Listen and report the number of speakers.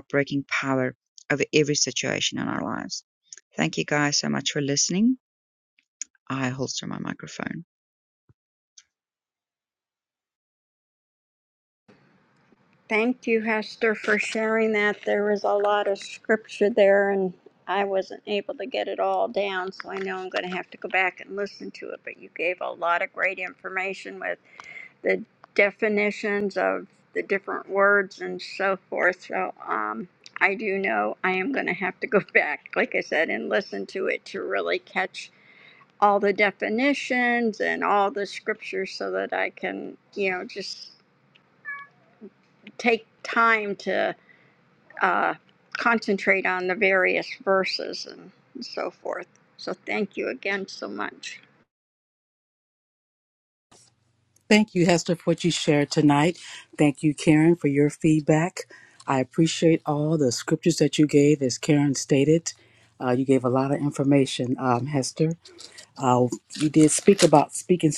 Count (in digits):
3